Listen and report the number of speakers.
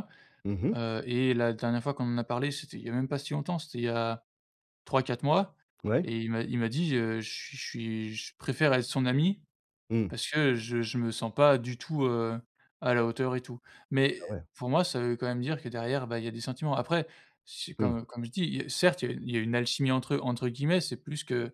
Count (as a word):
two